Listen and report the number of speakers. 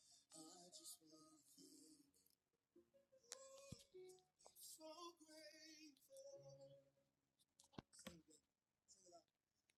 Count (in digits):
0